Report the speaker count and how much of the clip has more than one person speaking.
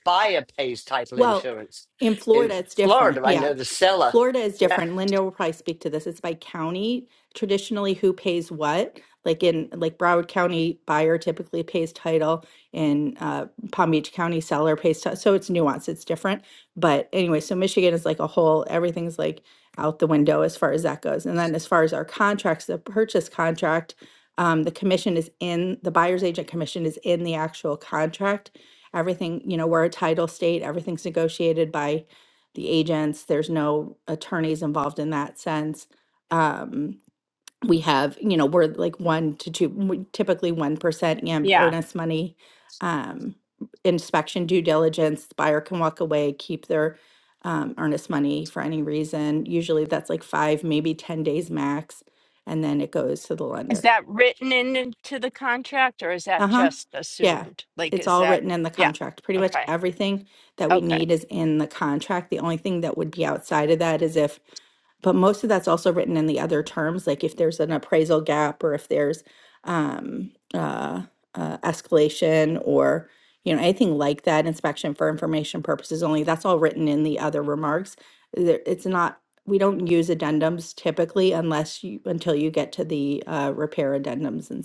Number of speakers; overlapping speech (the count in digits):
3, about 4%